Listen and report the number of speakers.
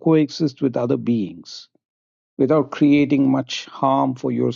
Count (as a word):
one